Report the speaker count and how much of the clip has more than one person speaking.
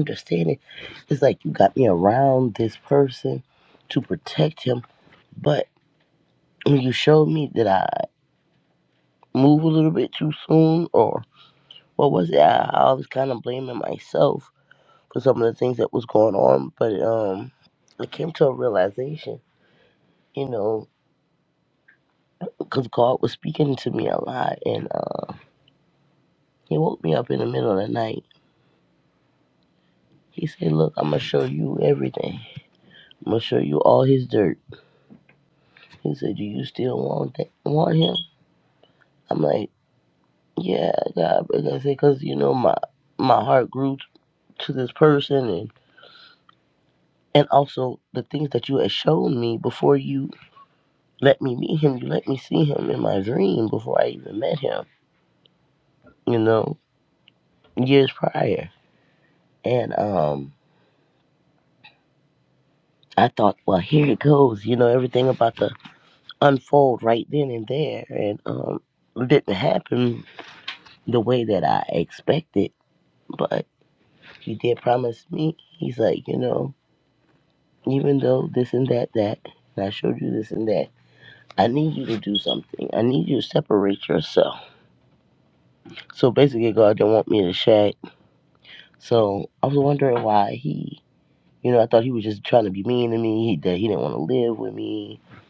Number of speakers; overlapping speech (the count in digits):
1, no overlap